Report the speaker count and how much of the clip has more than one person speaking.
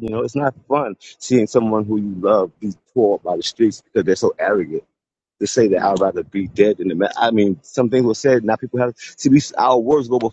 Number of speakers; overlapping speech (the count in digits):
1, no overlap